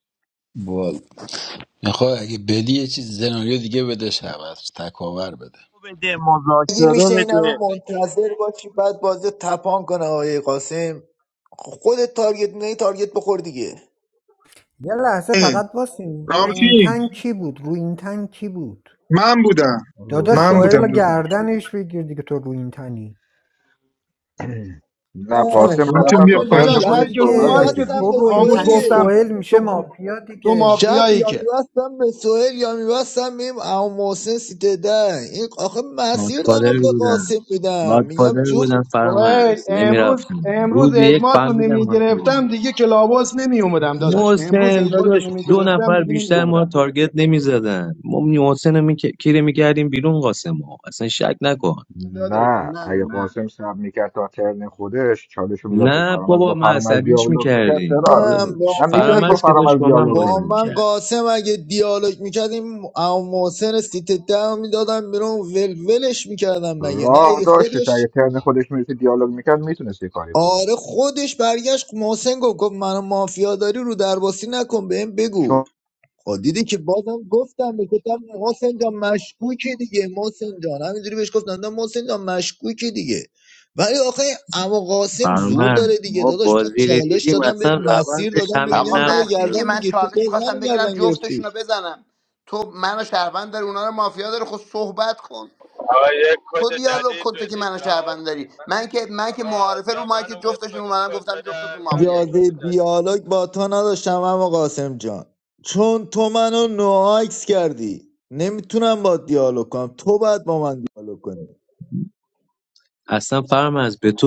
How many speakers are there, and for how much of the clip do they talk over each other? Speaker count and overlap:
10, about 31%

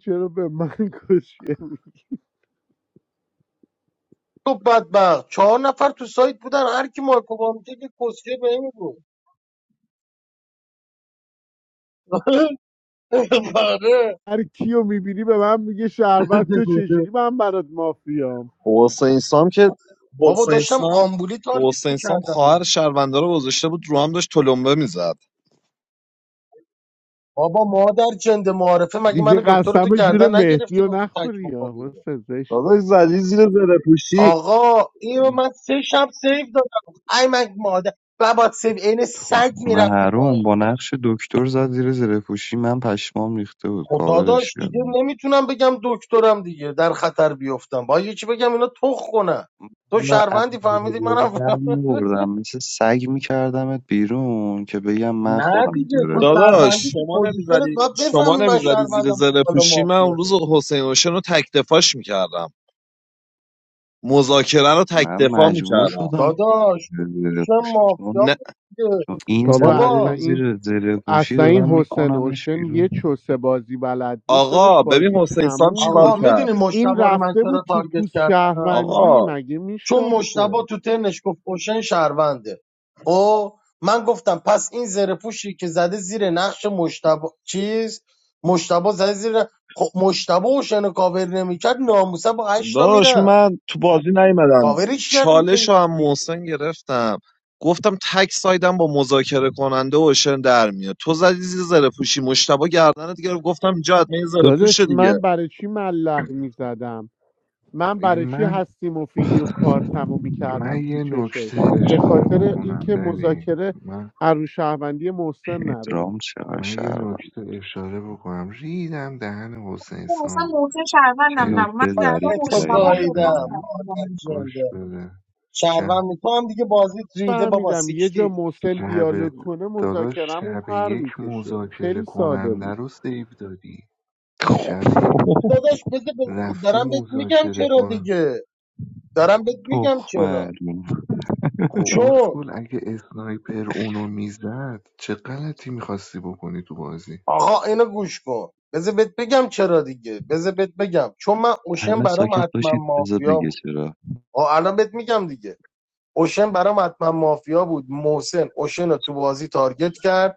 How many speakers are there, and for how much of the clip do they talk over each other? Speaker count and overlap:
6, about 27%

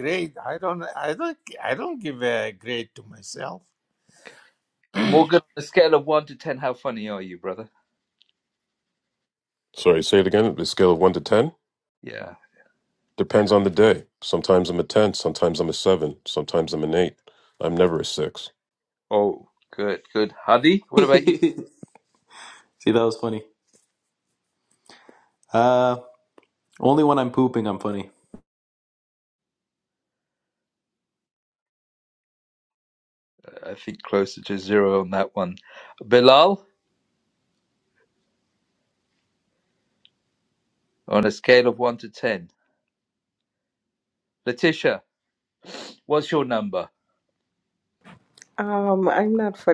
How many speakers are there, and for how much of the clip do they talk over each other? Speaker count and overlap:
5, about 1%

